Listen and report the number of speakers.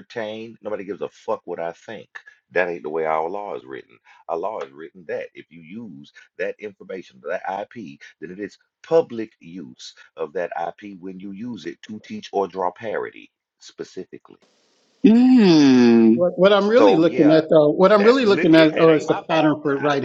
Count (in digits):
3